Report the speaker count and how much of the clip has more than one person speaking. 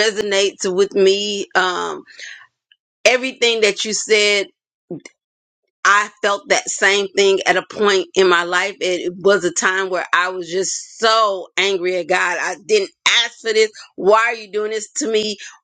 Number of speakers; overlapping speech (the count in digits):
1, no overlap